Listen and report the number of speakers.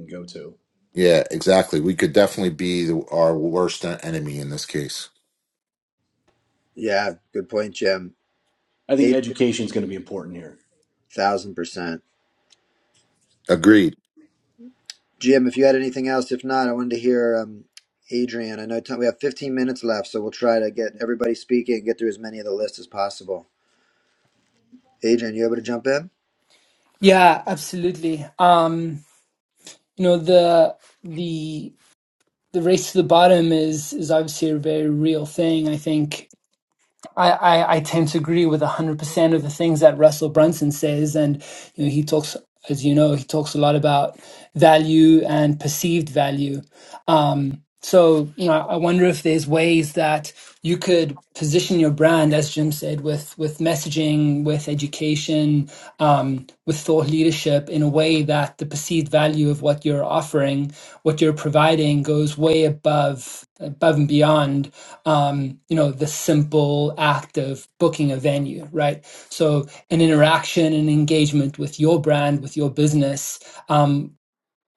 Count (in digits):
4